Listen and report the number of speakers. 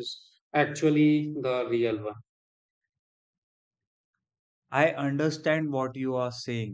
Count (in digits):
2